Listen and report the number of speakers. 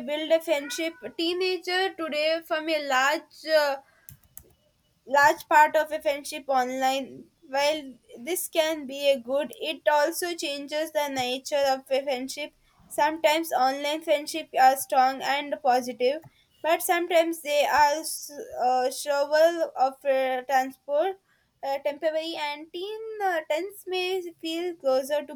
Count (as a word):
one